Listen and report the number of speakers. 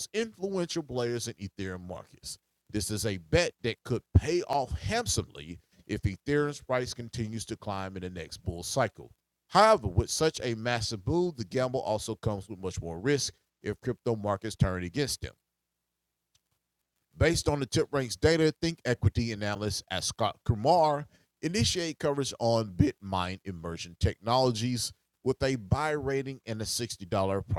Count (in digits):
1